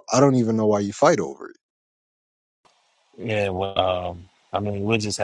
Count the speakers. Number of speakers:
2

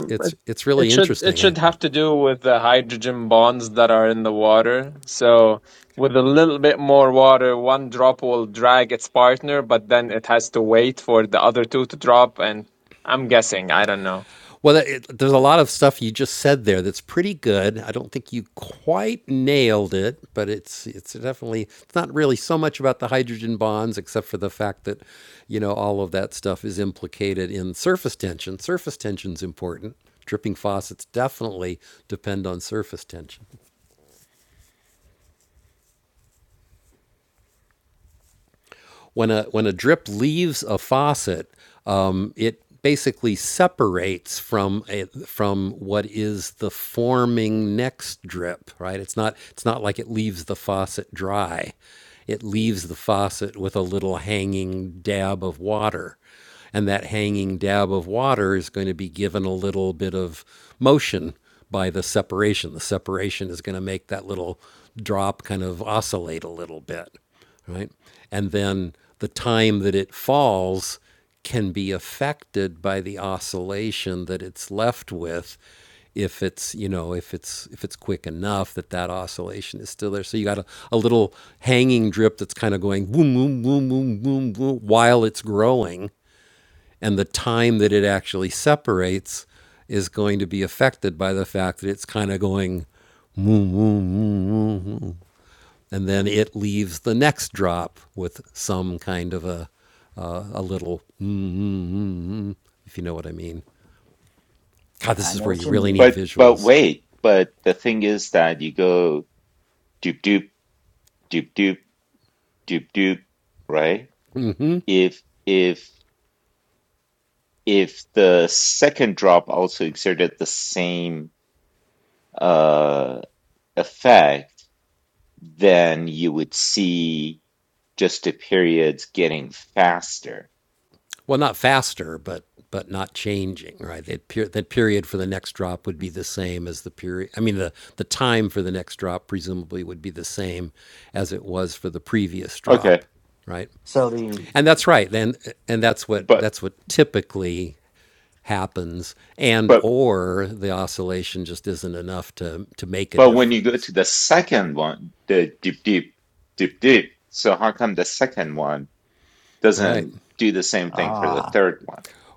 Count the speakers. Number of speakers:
4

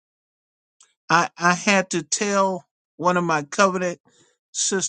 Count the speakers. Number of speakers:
1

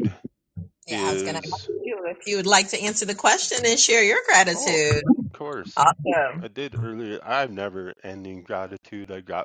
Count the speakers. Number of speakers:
2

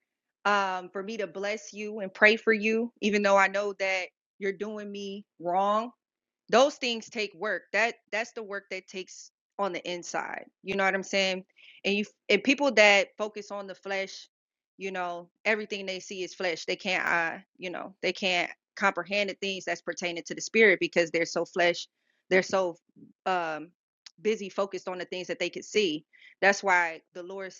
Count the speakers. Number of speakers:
1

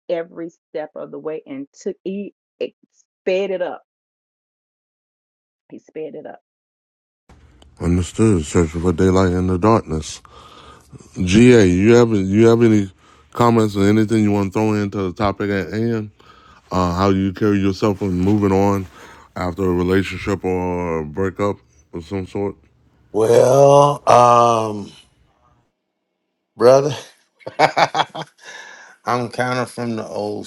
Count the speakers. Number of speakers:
3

